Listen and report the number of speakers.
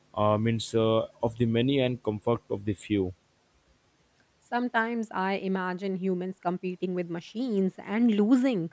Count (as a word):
two